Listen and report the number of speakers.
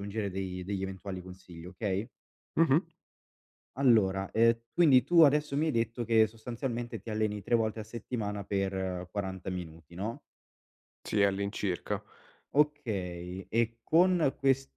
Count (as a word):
two